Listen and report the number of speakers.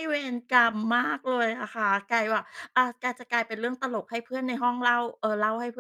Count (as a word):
one